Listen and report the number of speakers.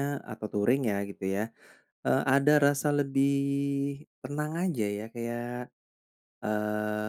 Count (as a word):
one